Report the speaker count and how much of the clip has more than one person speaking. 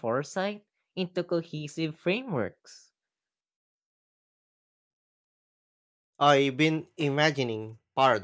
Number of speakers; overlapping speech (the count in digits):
2, no overlap